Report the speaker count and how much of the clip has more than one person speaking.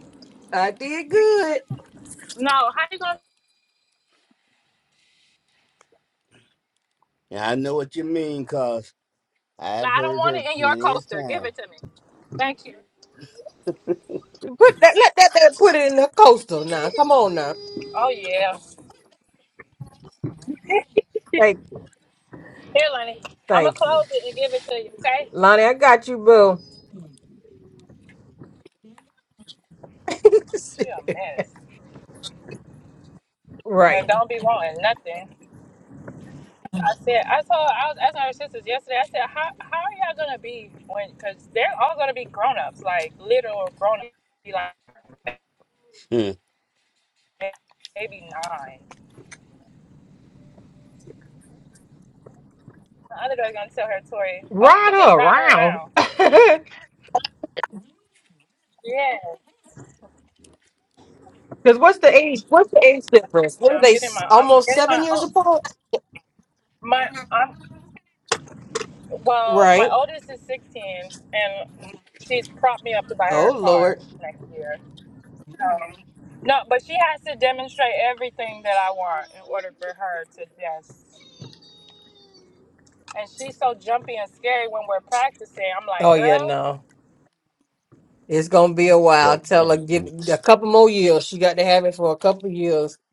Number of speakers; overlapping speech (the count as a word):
three, about 8%